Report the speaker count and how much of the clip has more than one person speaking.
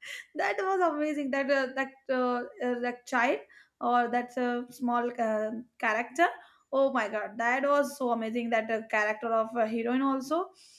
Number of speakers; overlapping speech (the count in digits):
1, no overlap